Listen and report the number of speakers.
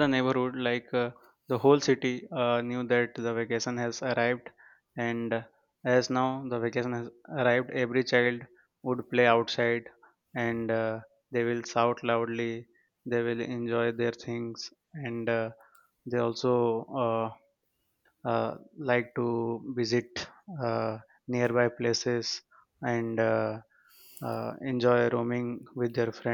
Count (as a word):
one